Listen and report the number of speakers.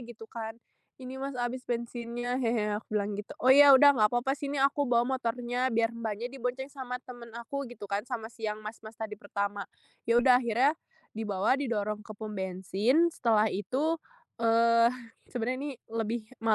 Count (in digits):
1